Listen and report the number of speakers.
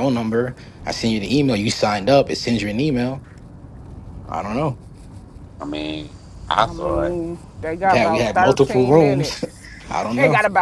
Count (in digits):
3